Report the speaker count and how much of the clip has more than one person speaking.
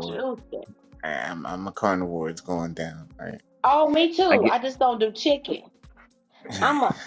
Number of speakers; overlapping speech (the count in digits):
2, about 6%